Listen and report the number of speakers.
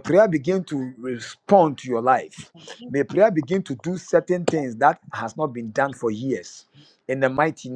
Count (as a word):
one